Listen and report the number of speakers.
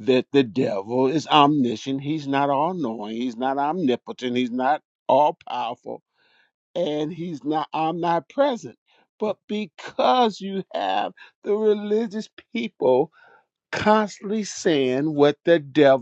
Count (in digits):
1